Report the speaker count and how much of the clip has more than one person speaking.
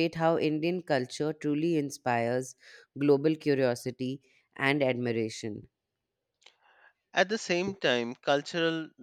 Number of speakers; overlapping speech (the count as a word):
two, no overlap